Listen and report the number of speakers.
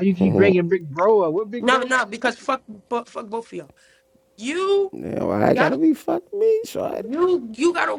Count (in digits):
3